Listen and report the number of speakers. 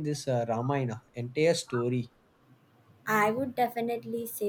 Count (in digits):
2